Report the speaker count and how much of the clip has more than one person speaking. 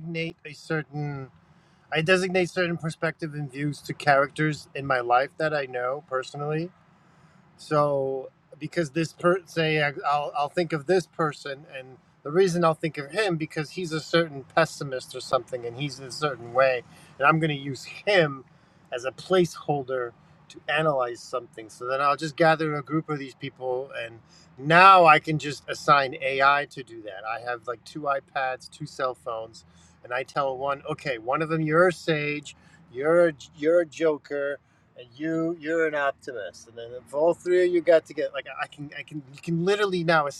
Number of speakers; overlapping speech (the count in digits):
1, no overlap